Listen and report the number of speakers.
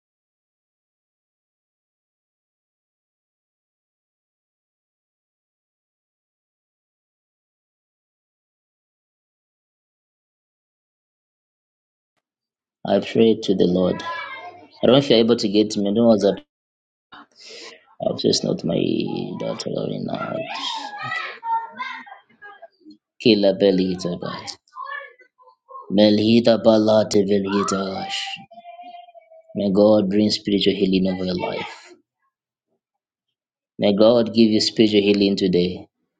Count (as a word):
one